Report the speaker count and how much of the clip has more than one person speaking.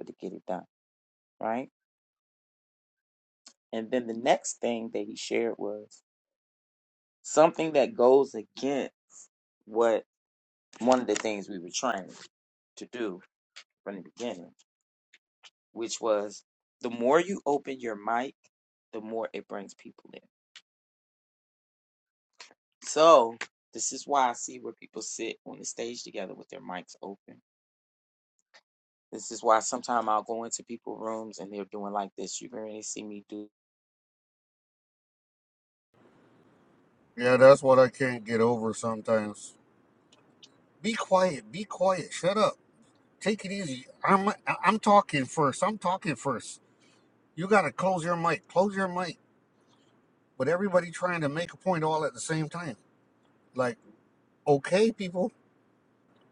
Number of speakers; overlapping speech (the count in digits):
2, no overlap